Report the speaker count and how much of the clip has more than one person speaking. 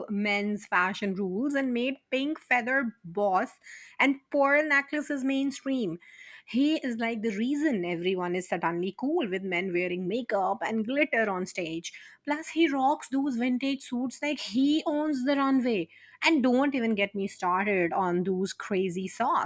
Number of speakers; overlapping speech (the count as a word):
one, no overlap